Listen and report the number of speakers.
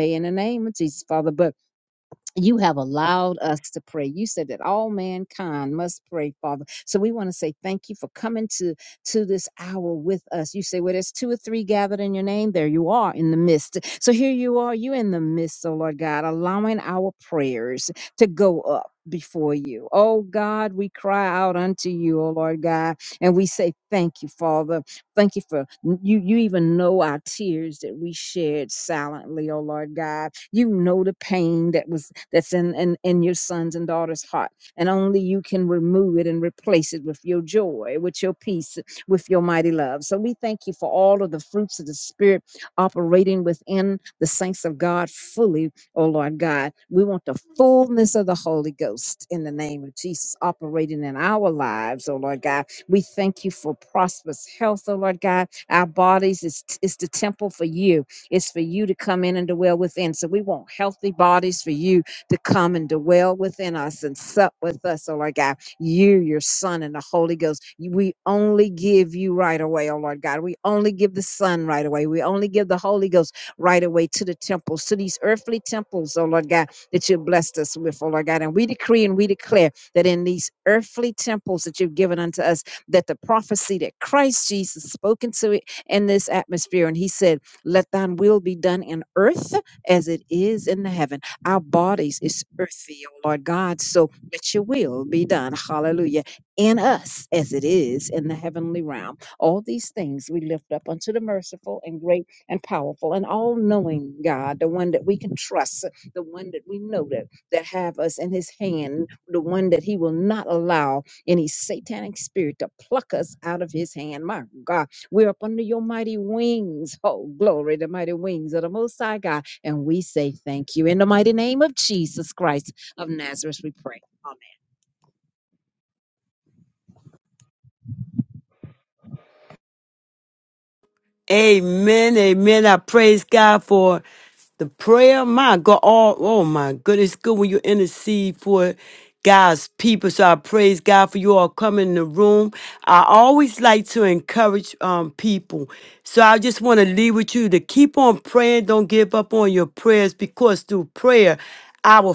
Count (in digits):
2